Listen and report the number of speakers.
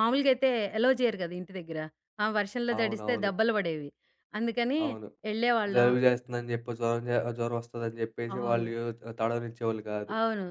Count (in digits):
2